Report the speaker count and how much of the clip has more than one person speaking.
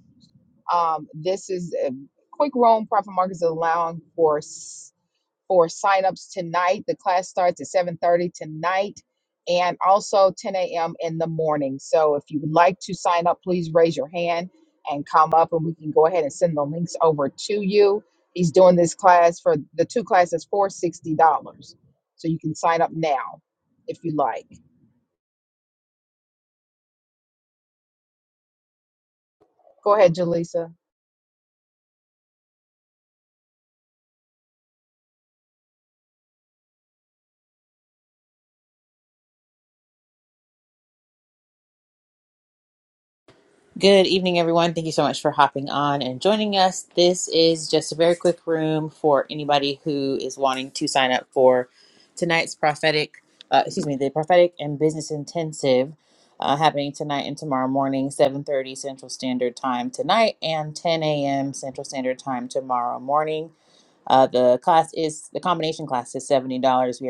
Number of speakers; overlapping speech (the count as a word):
two, no overlap